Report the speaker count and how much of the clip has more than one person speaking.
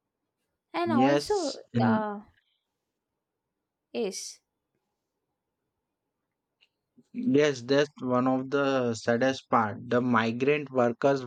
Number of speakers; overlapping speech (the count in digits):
2, about 6%